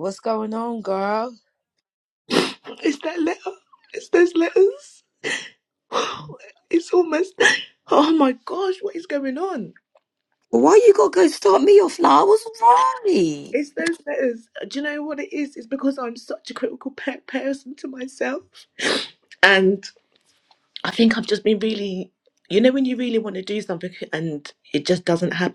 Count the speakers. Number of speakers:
3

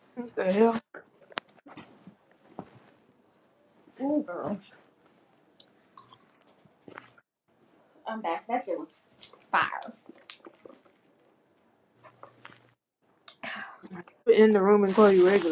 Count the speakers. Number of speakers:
2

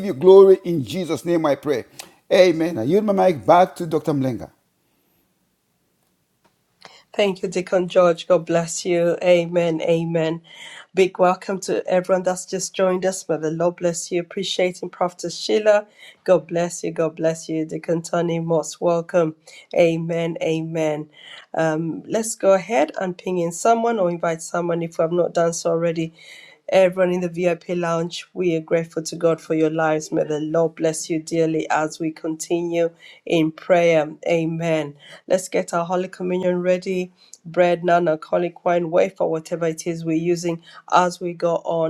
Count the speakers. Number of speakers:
2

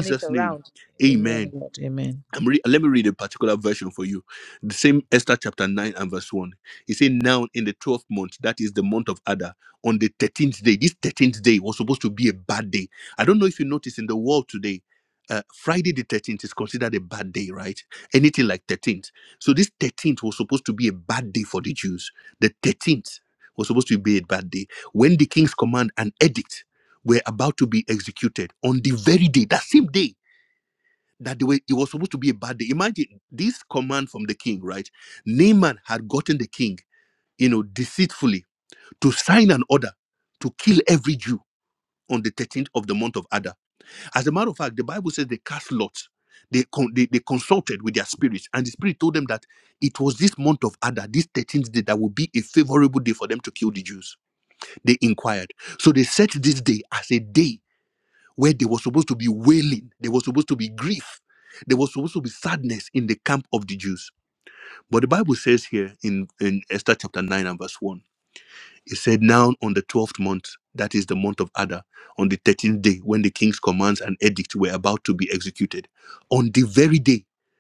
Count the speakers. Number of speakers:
2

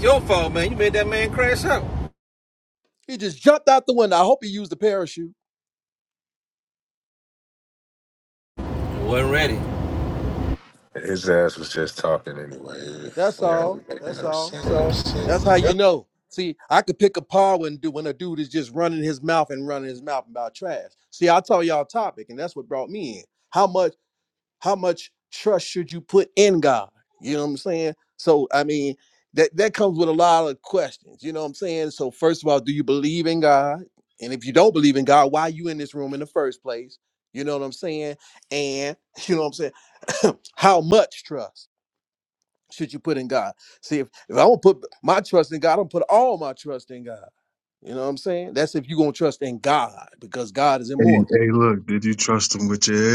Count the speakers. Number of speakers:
4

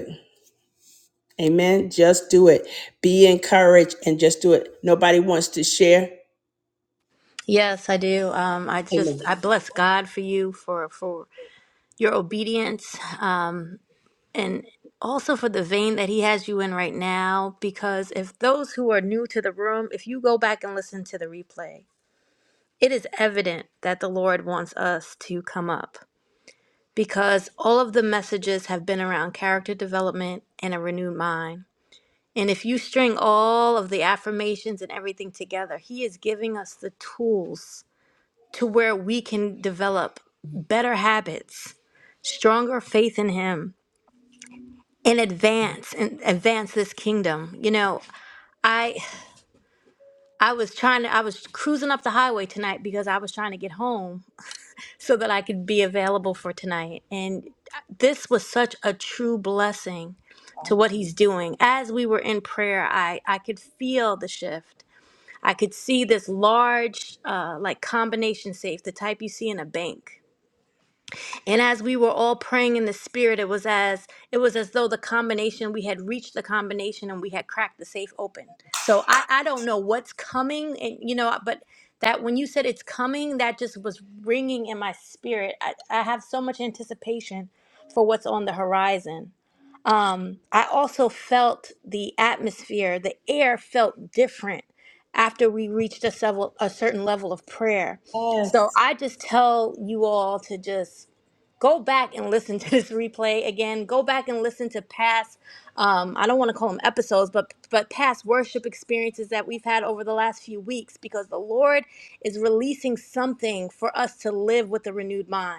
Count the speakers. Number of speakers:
2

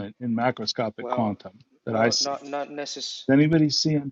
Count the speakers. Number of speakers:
2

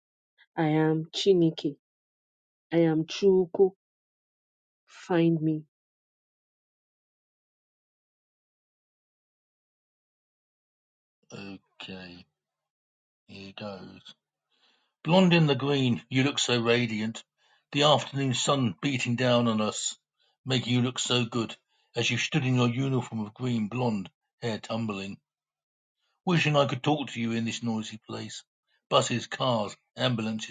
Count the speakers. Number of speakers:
2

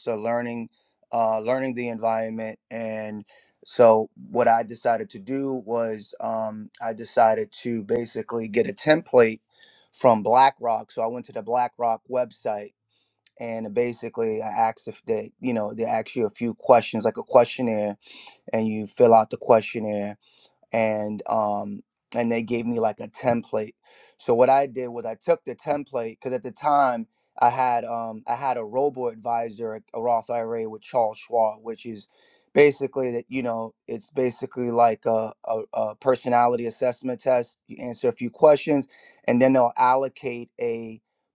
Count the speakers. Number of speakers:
1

